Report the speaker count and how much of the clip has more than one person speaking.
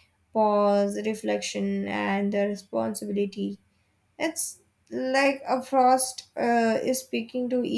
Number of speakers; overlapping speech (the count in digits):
1, no overlap